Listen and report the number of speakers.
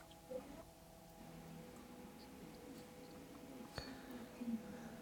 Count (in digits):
0